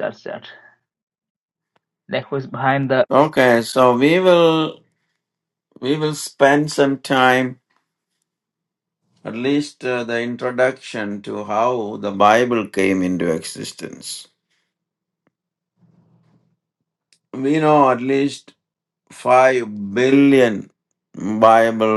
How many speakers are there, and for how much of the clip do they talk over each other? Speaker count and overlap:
two, no overlap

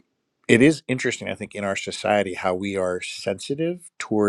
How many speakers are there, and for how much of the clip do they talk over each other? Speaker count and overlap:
one, no overlap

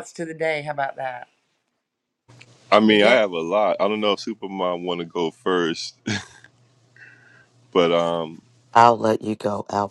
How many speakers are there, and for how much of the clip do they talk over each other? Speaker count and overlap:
three, about 3%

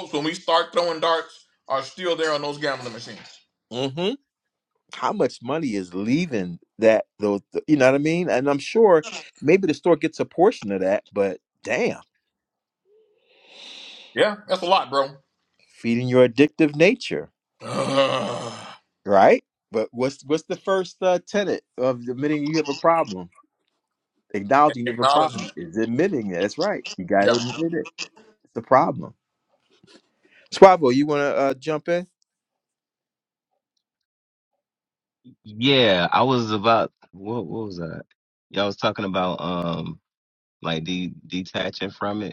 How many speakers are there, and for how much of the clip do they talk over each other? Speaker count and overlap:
three, about 2%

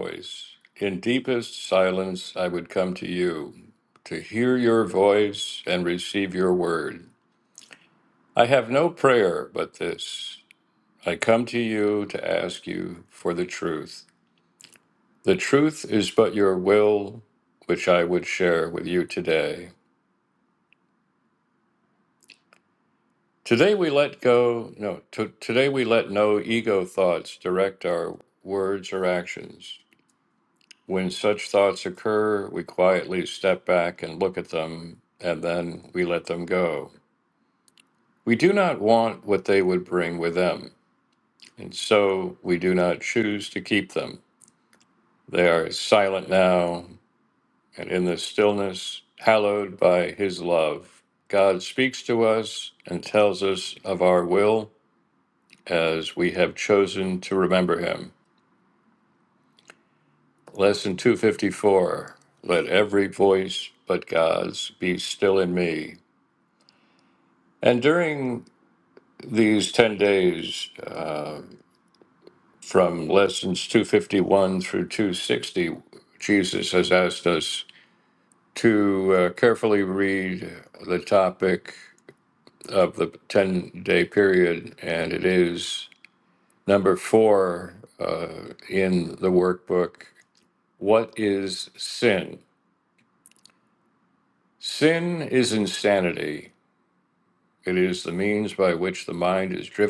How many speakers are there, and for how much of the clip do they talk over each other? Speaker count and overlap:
one, no overlap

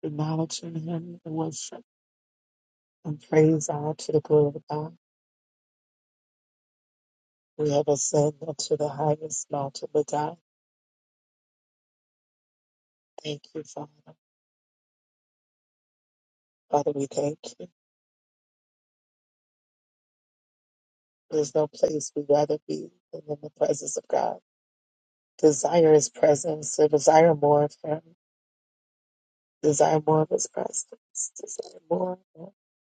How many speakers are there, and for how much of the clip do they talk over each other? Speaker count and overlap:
one, no overlap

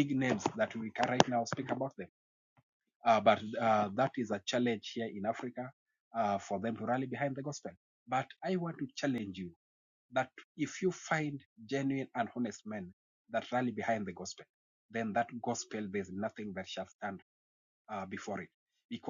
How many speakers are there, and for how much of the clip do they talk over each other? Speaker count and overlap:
one, no overlap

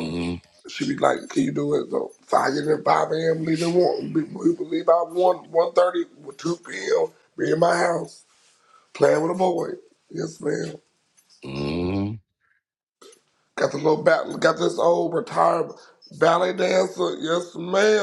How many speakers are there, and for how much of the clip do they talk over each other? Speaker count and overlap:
two, about 1%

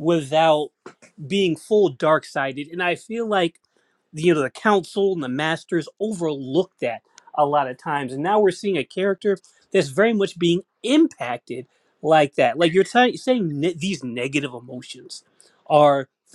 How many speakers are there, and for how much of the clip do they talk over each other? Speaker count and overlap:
one, no overlap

